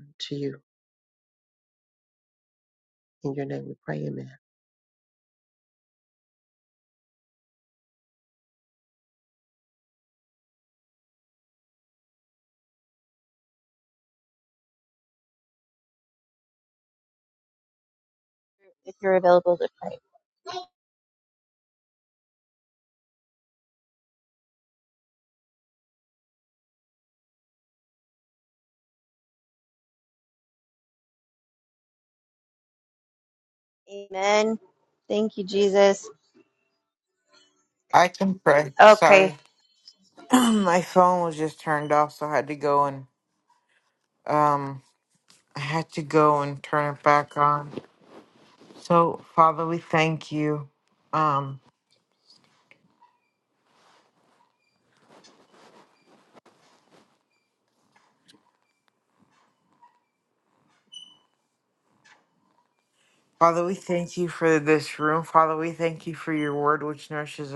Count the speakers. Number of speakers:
three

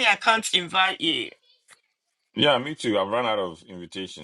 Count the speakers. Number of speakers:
two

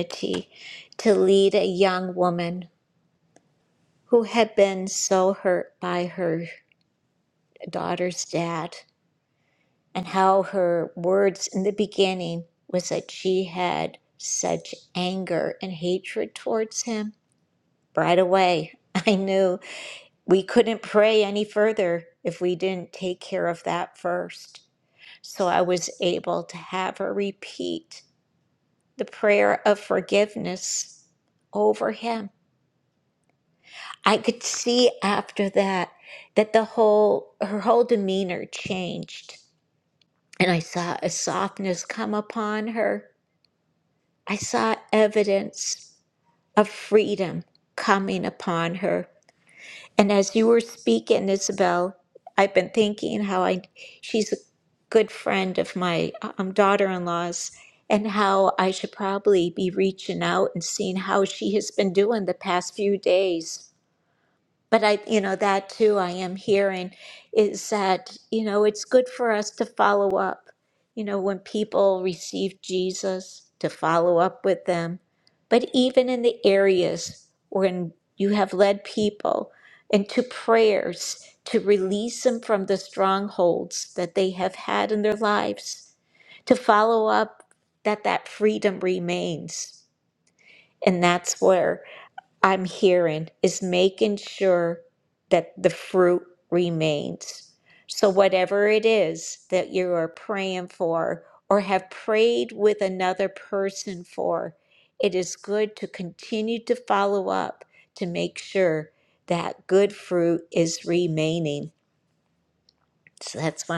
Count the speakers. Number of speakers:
one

